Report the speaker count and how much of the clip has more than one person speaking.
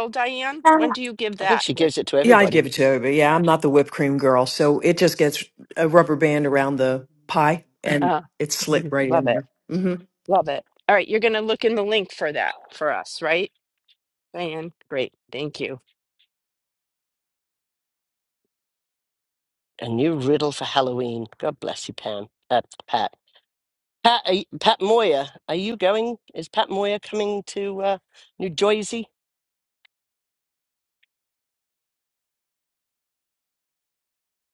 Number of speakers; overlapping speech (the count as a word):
three, about 5%